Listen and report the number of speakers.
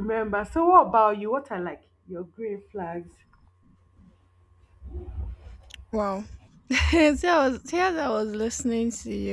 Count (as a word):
two